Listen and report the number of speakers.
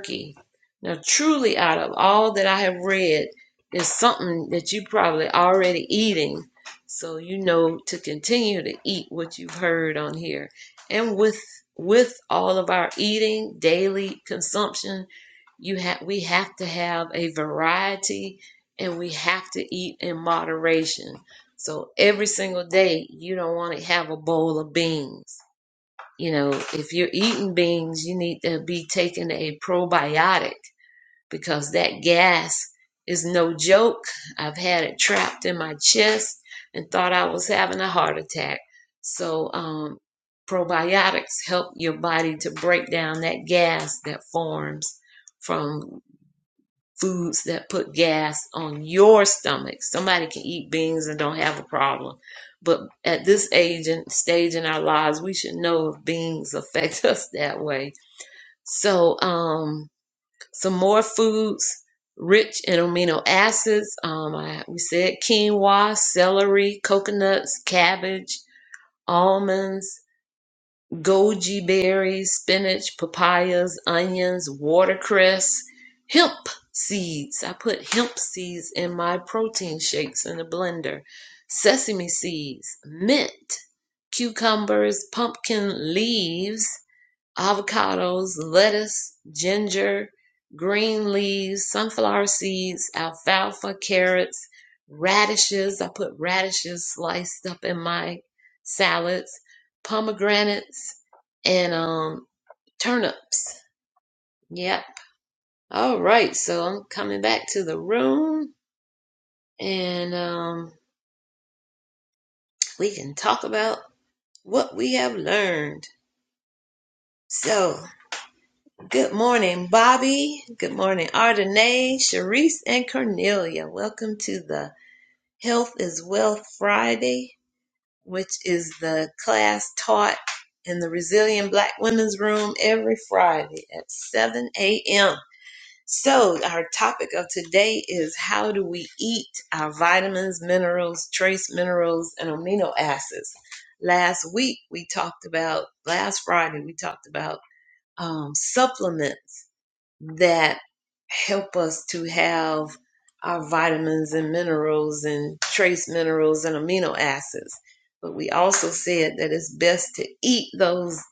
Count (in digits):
1